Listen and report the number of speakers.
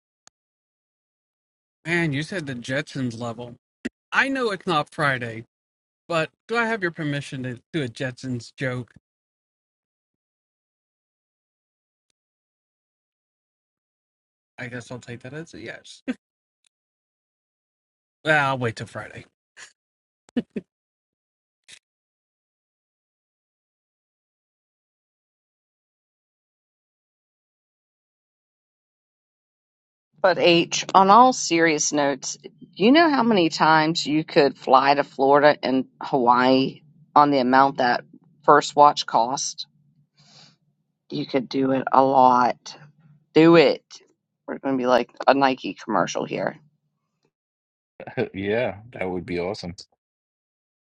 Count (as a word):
three